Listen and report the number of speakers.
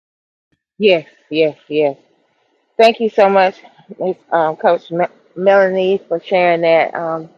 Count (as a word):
one